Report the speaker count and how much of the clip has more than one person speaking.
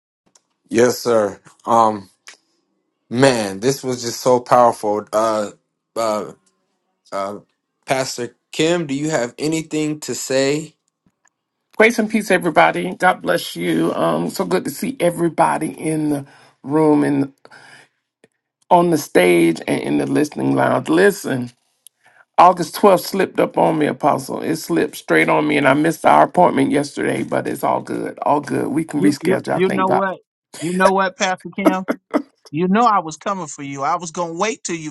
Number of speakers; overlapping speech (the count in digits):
3, about 3%